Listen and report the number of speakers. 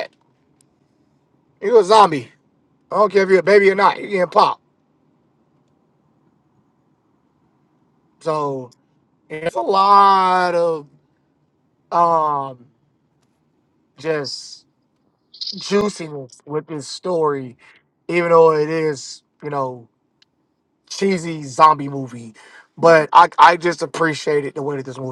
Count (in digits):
1